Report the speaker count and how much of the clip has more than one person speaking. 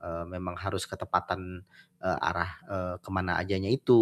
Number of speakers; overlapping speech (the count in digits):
1, no overlap